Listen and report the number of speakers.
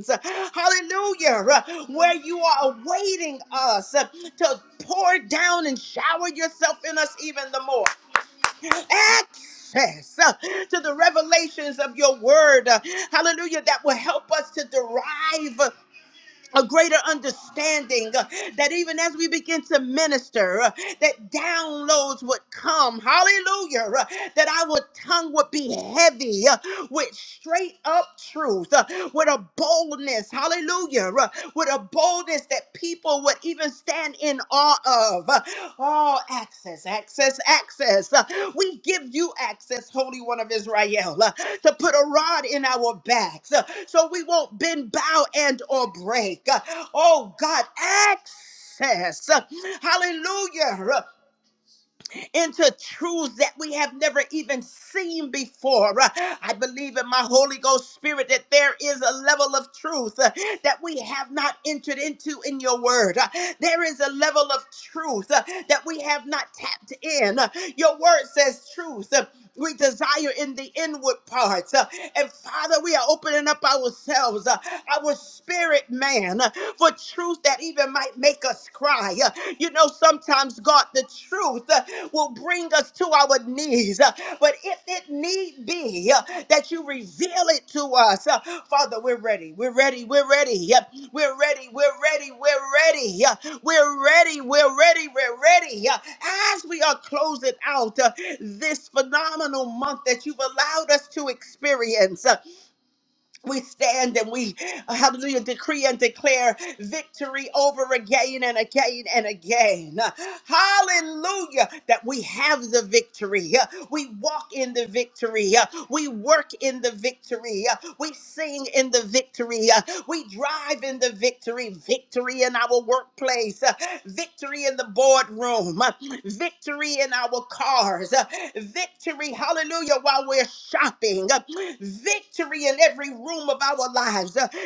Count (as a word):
one